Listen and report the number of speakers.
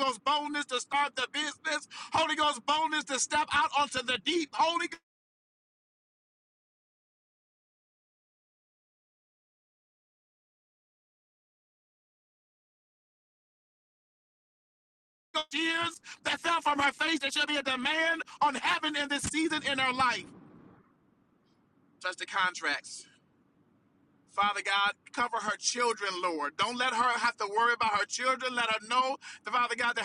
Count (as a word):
one